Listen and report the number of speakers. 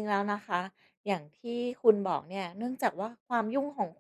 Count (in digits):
1